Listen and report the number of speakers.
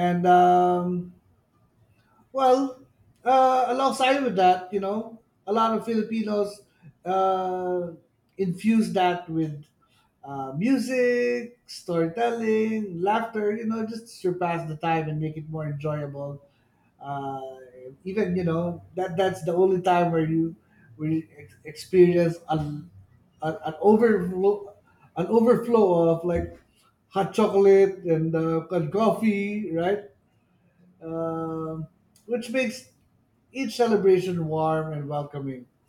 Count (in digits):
1